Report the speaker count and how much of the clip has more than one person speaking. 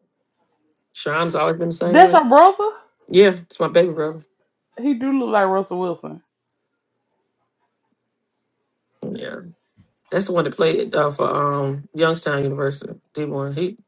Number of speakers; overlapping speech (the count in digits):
2, about 2%